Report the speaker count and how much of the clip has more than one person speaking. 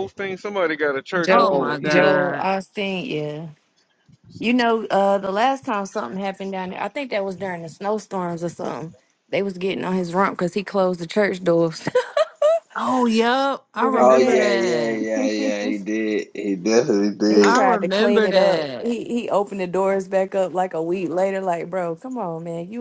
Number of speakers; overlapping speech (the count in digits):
4, about 19%